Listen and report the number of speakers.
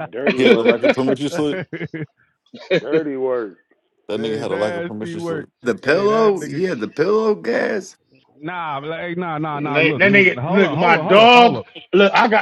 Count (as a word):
five